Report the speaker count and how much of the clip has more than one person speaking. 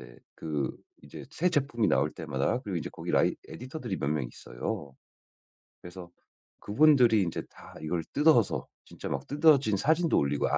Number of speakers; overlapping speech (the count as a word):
one, no overlap